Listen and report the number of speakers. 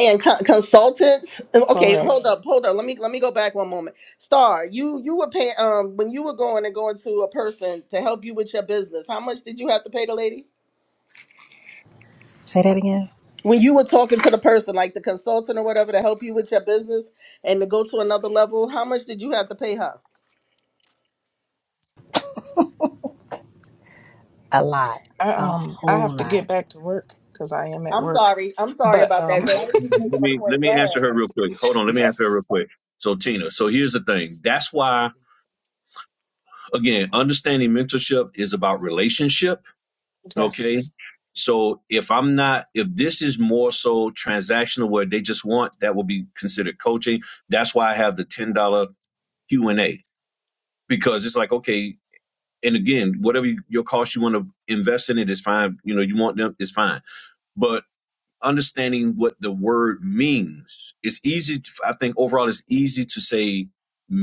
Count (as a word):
four